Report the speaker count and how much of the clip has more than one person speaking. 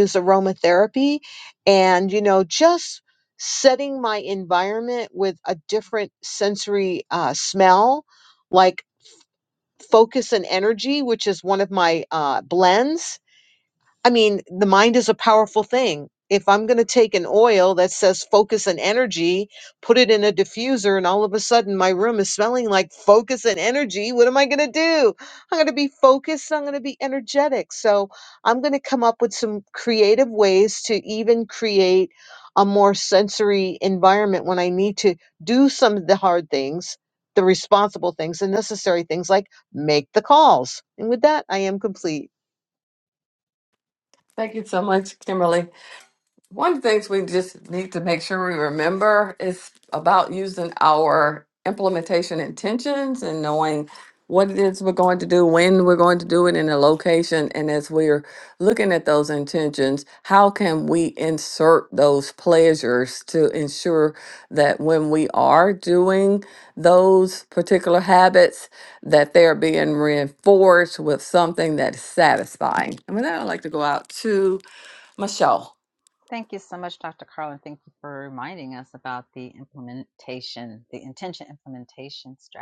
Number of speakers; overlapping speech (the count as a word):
three, no overlap